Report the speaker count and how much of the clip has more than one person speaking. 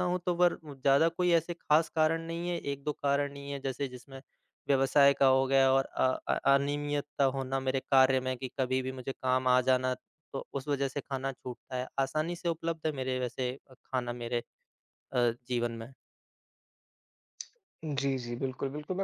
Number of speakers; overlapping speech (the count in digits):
2, no overlap